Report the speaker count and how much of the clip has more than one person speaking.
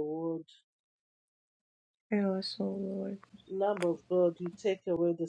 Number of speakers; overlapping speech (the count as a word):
two, no overlap